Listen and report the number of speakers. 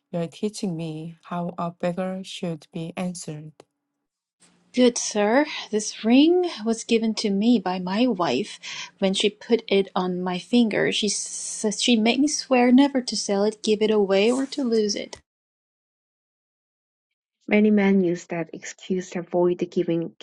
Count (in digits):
3